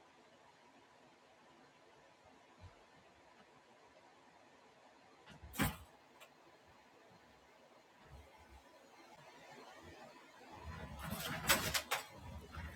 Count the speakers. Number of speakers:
zero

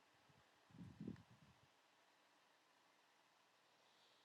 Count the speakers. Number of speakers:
zero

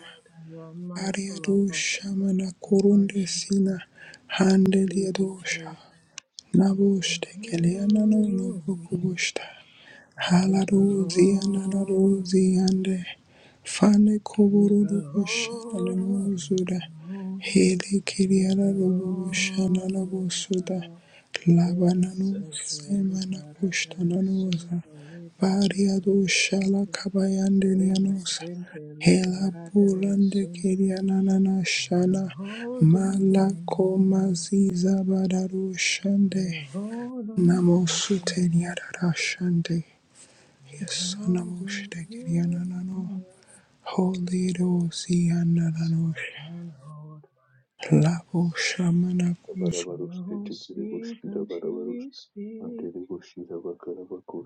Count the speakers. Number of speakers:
three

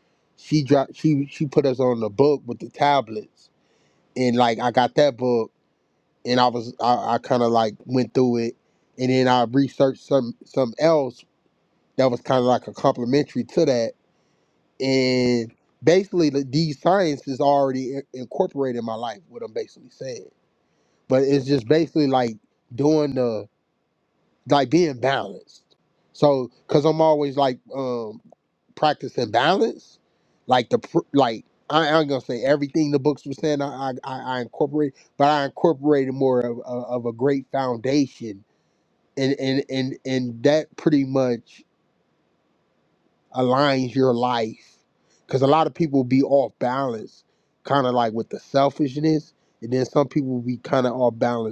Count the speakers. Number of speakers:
one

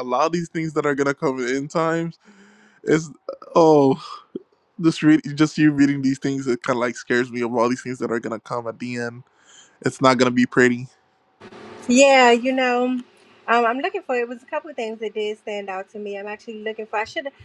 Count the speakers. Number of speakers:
two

